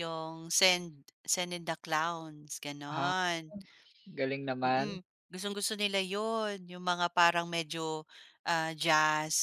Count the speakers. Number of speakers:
two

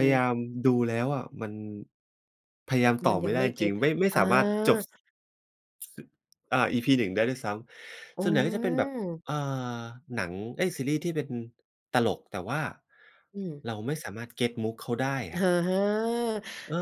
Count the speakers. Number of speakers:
two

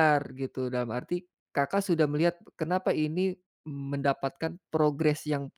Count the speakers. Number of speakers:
one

